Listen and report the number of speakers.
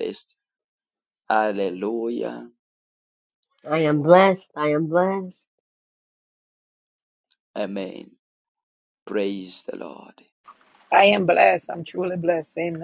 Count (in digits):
3